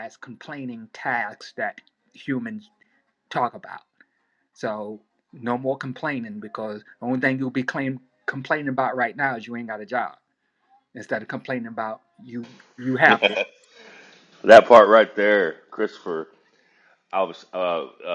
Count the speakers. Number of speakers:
two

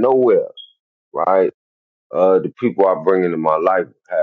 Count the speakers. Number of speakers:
one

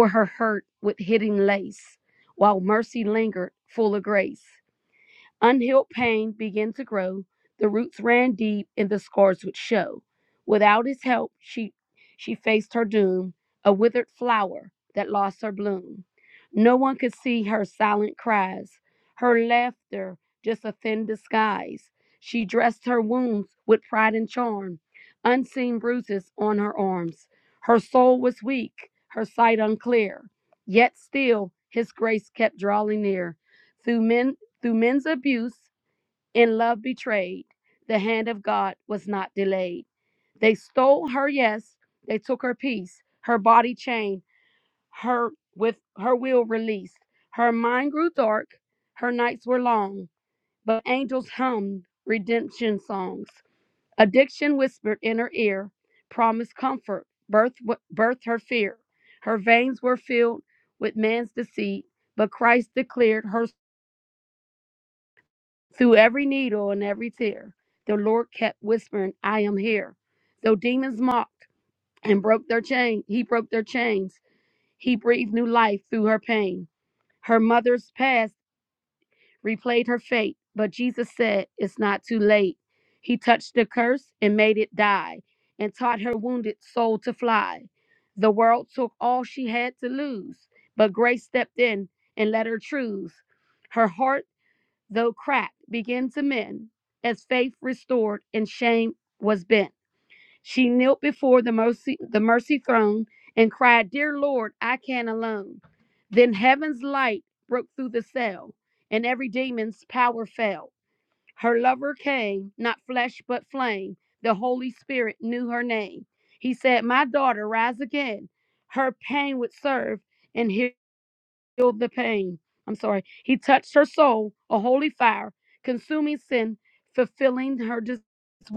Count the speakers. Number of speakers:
one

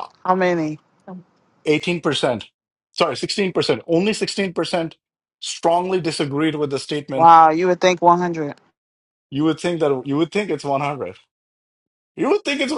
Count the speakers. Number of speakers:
two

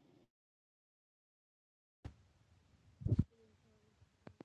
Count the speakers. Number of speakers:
zero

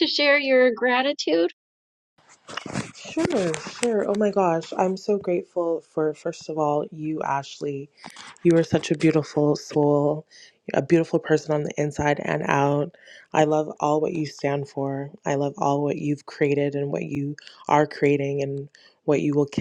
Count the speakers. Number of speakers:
two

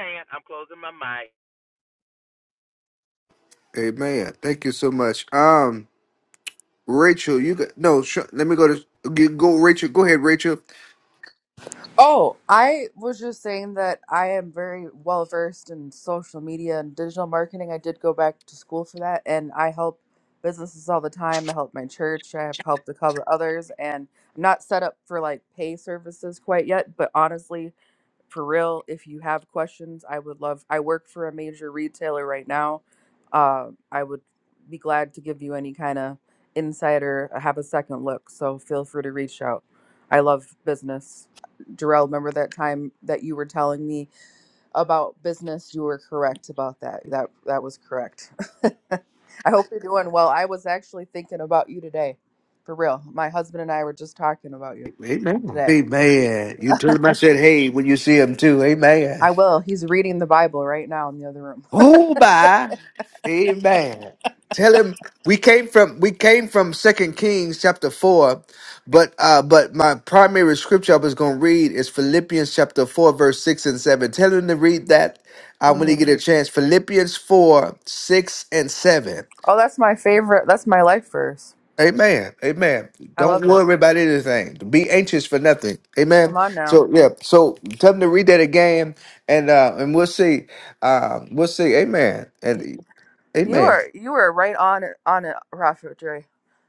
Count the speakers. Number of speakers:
three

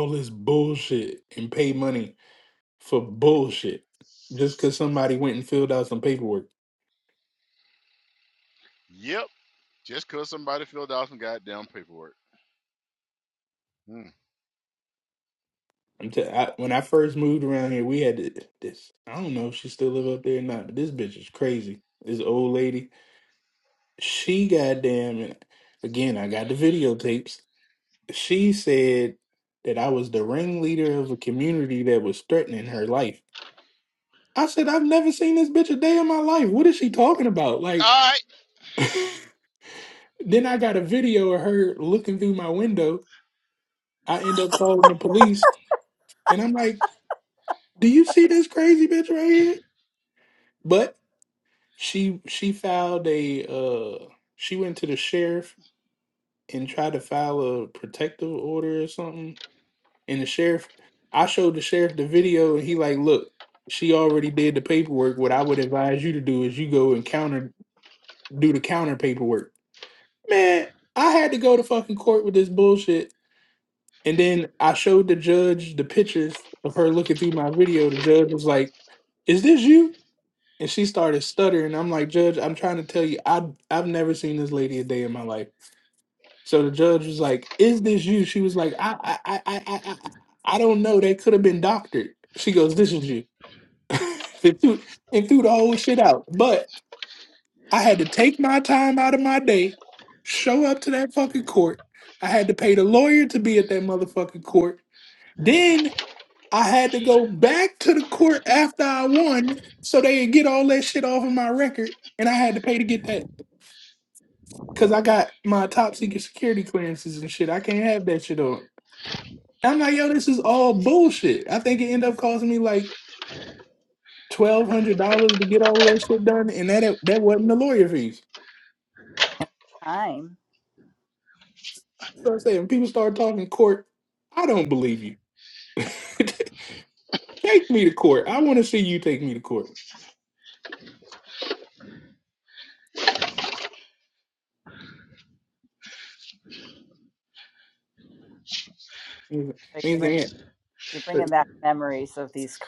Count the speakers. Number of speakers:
three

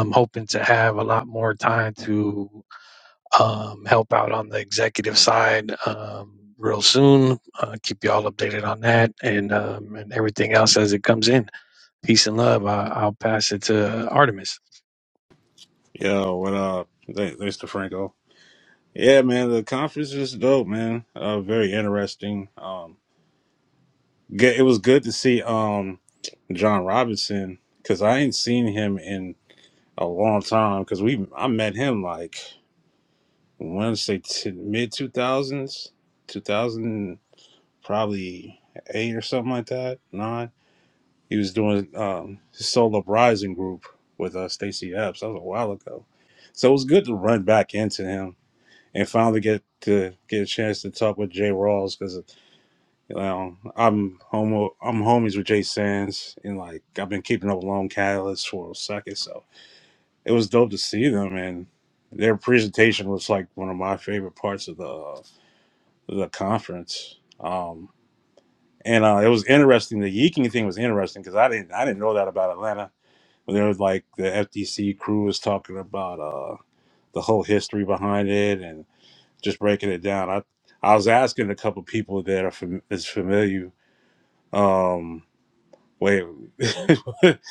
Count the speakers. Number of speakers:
two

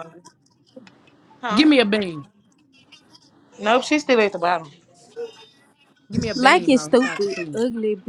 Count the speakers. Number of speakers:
three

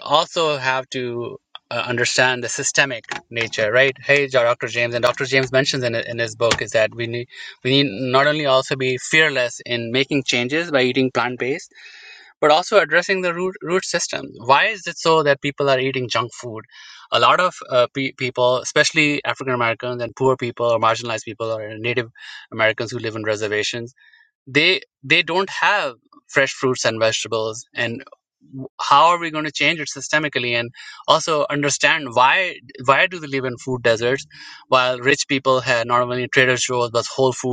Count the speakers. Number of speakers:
one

